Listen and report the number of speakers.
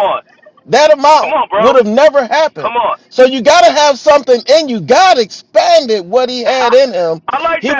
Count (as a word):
two